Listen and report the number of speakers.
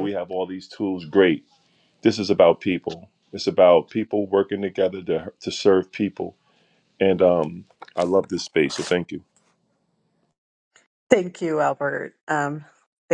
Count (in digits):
2